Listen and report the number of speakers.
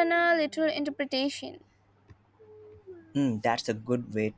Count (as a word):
two